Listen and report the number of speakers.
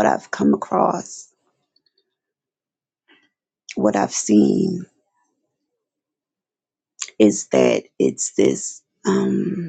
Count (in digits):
1